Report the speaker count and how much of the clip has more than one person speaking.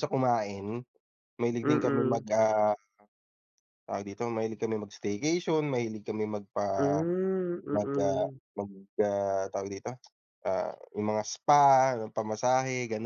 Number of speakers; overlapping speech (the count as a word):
two, about 9%